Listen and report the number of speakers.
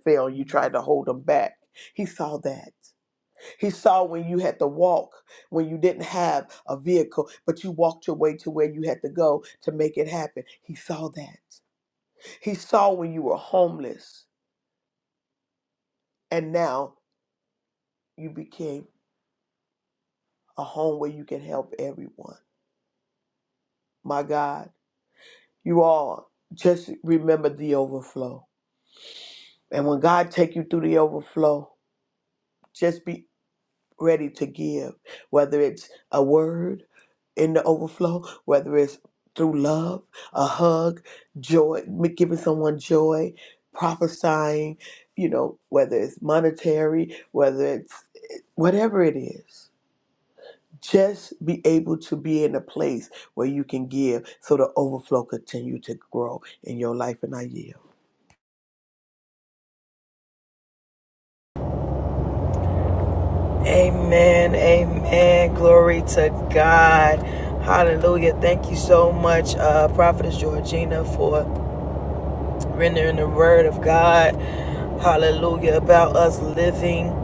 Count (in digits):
2